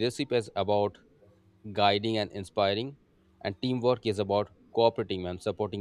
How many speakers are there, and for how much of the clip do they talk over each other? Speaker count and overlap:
1, no overlap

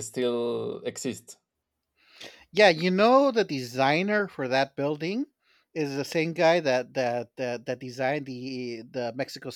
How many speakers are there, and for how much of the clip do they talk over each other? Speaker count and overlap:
2, no overlap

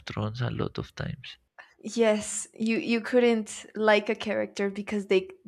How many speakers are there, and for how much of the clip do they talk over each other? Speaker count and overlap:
2, no overlap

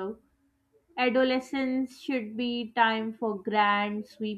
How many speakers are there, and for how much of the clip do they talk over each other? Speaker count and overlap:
1, no overlap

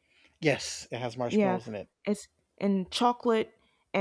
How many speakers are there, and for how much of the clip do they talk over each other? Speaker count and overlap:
2, about 7%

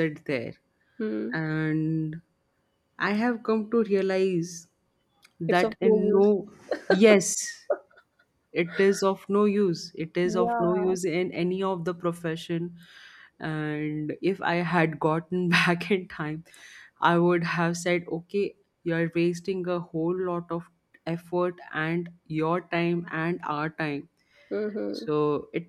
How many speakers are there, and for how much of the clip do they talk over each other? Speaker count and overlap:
2, about 6%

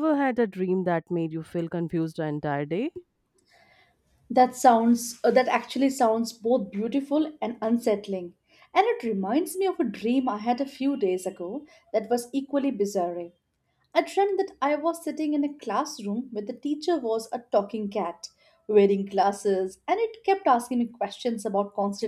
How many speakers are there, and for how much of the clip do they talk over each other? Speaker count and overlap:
2, no overlap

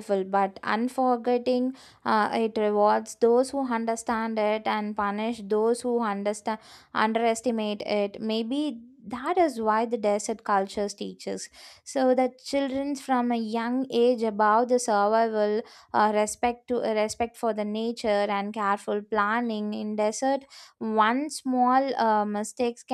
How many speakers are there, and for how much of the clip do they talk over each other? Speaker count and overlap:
1, no overlap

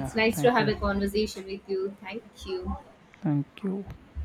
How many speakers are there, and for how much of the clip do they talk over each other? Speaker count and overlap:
2, about 18%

